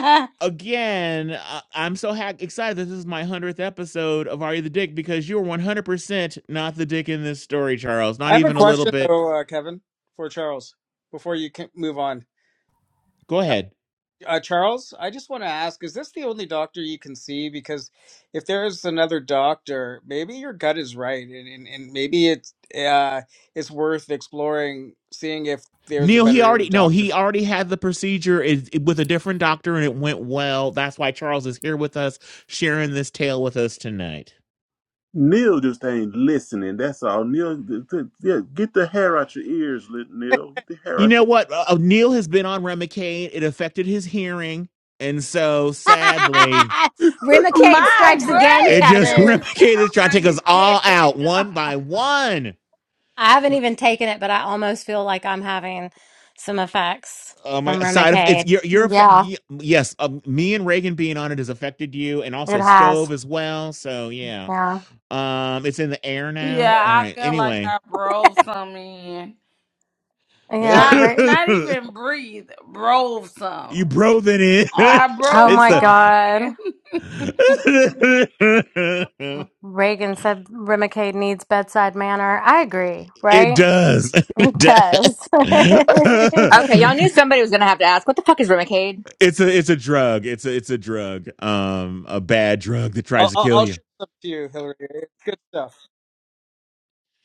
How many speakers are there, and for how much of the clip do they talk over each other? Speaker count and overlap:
6, about 12%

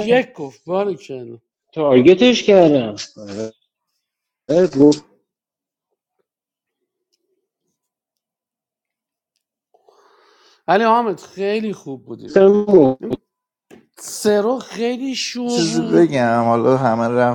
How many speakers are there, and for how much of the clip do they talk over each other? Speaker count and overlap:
3, about 3%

